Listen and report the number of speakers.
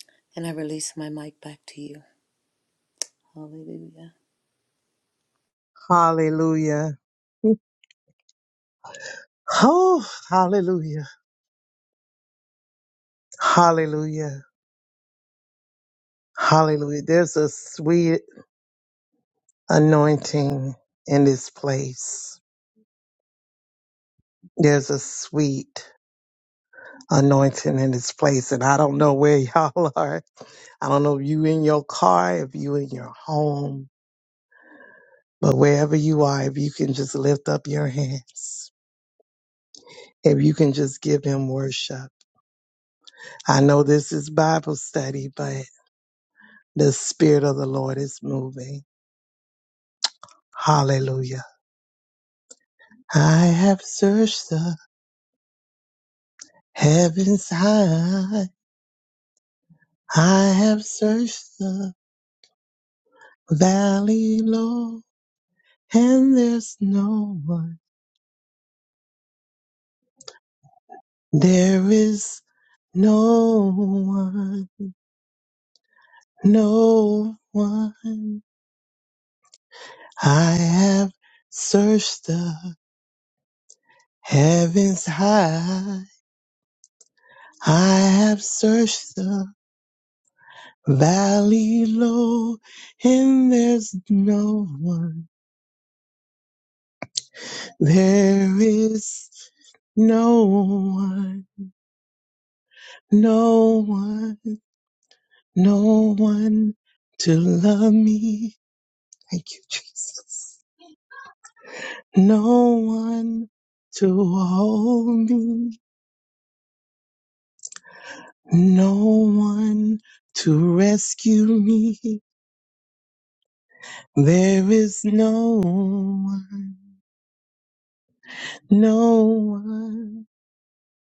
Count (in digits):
2